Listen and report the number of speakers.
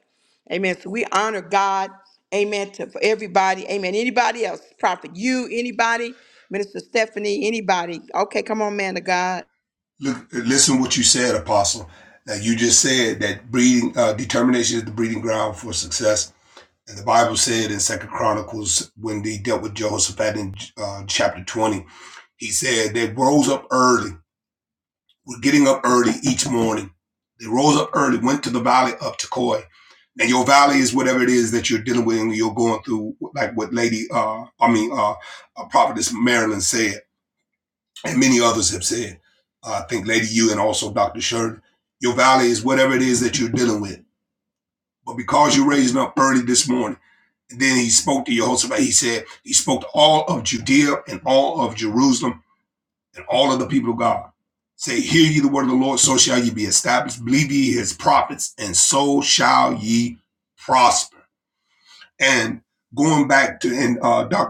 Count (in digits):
2